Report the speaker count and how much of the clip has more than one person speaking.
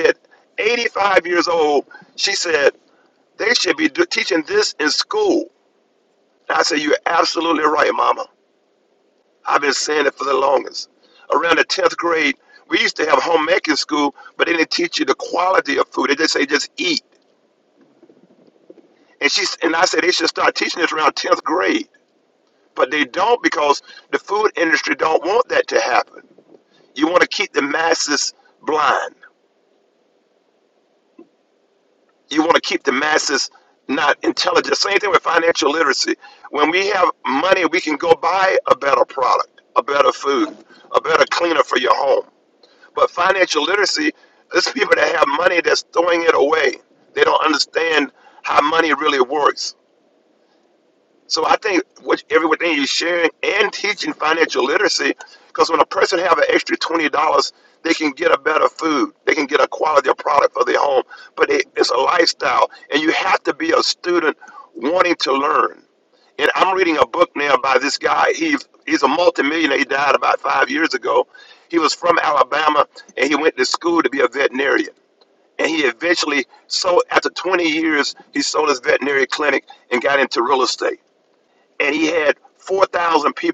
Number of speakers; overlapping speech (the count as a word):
one, no overlap